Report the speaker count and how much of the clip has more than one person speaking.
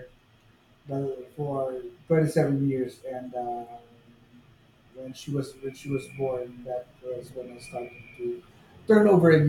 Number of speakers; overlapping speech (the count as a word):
one, no overlap